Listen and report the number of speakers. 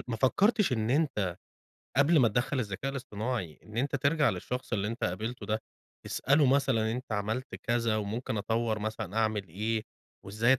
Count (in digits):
1